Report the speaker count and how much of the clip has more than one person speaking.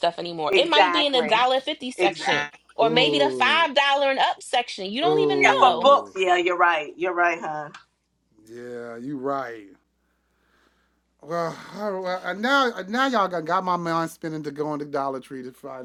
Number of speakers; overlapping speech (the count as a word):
three, about 21%